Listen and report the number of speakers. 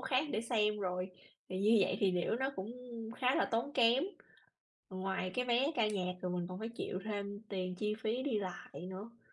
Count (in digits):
1